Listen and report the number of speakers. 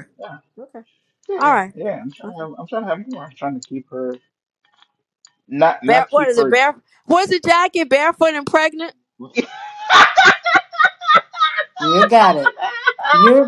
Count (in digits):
3